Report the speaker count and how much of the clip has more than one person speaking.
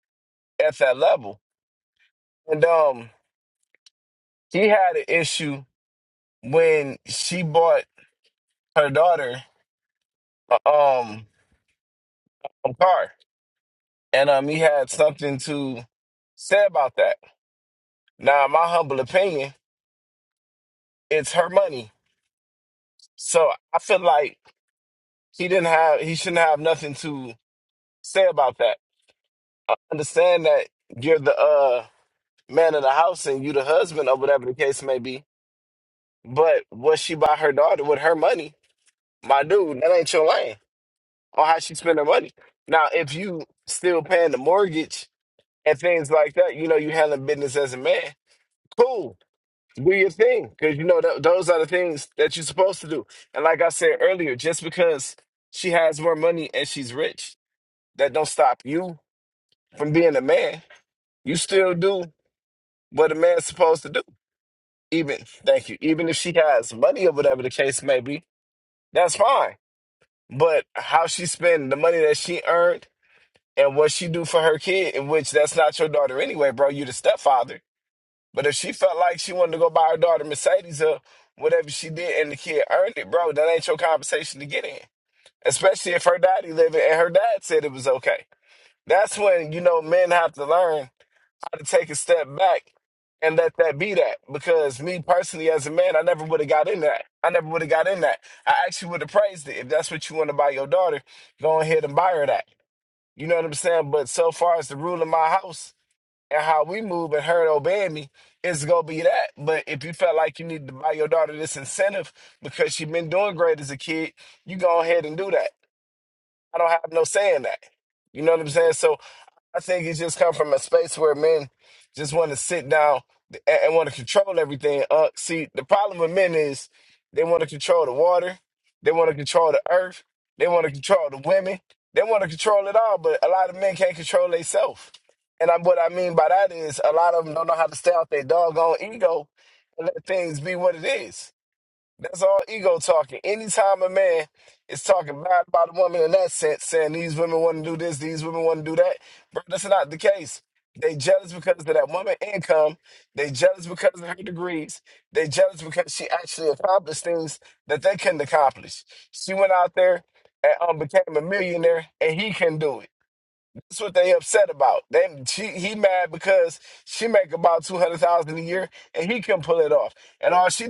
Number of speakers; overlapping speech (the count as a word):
one, no overlap